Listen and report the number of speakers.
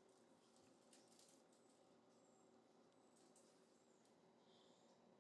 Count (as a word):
zero